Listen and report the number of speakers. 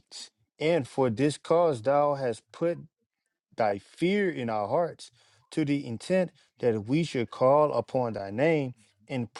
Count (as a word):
one